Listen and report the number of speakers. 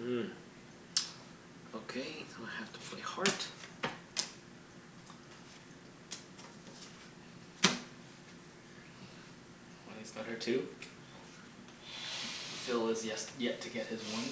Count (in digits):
2